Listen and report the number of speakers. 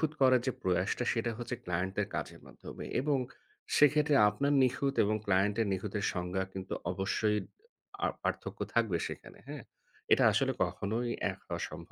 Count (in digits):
1